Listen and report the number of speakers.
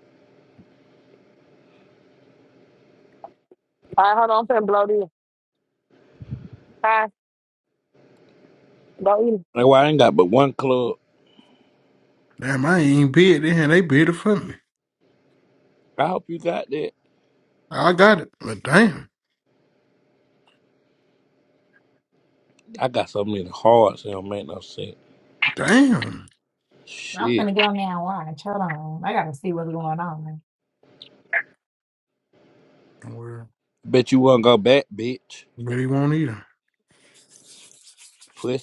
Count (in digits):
4